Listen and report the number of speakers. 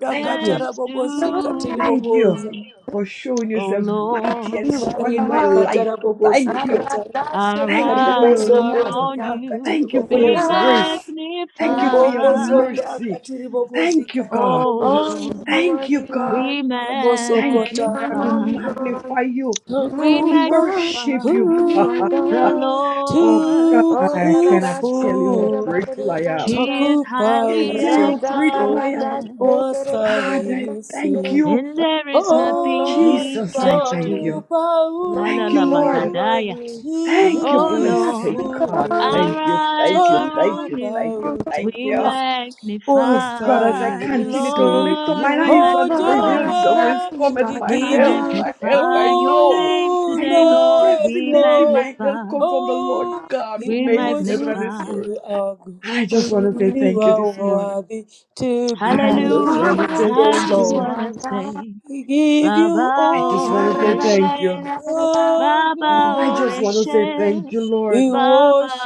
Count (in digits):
4